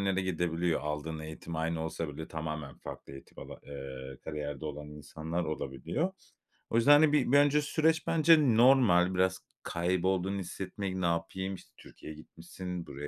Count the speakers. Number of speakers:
1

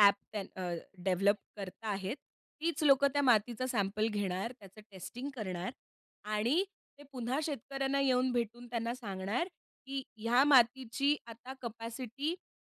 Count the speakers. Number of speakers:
1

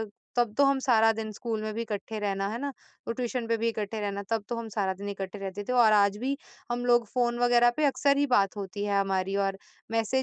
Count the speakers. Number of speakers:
1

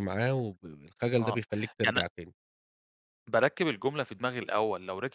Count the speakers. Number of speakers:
2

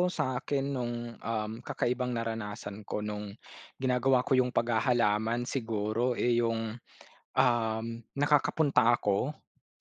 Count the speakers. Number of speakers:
1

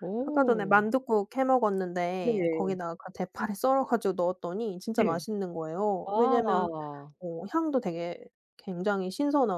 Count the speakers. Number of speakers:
2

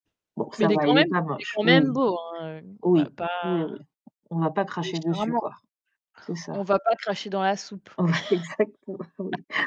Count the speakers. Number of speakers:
2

